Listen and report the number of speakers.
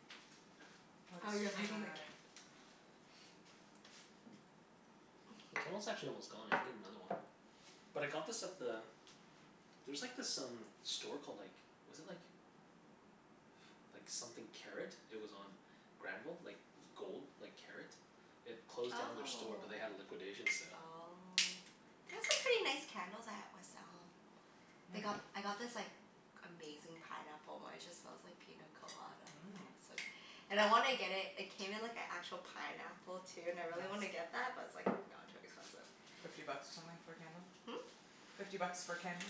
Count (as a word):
three